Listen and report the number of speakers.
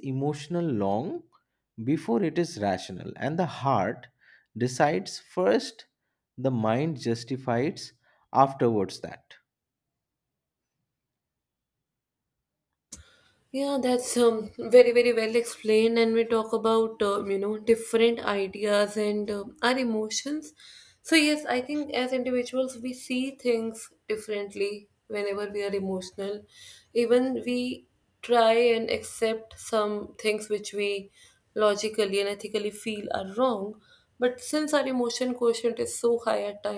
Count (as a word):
two